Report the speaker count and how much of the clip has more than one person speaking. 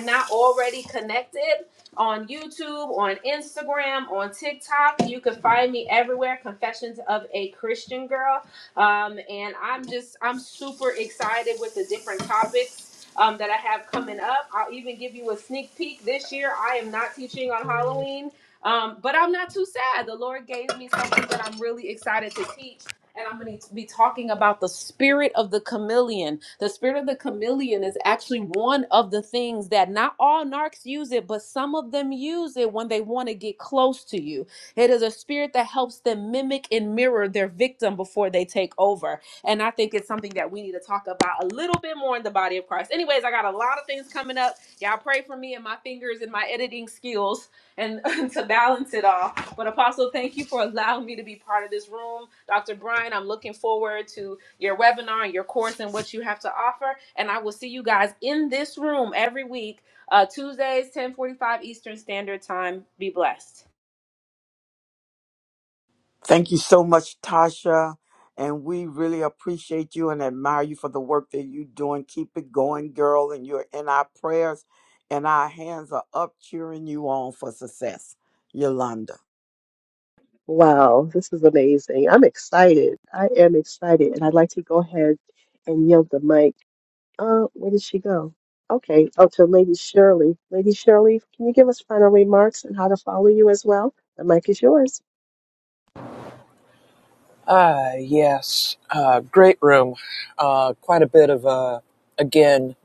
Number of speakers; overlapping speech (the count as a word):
four, no overlap